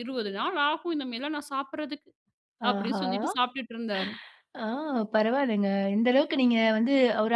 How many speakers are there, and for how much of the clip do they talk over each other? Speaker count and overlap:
two, about 4%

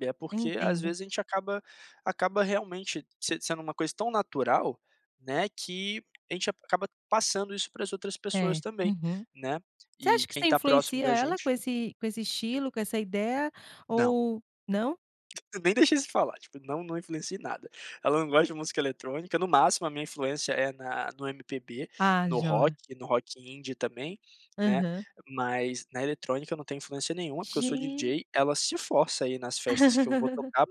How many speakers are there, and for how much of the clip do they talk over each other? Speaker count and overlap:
two, about 13%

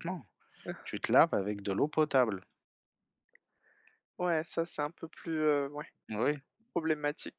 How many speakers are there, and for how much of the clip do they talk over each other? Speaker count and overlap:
two, no overlap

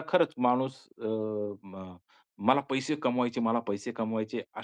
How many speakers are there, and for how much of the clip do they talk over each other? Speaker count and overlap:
one, no overlap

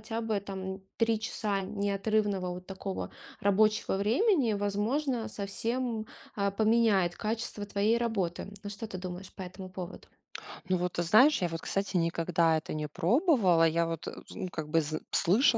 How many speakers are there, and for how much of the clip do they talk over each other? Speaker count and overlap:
two, no overlap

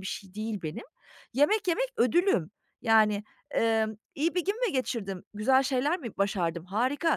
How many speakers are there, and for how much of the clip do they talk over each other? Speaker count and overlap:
one, no overlap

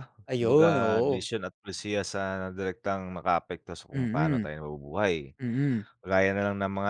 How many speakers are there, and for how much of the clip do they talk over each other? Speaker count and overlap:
two, about 19%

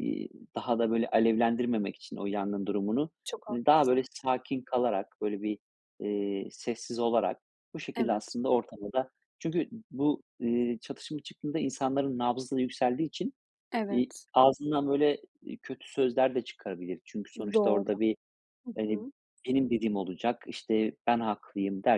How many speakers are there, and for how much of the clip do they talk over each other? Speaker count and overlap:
two, about 6%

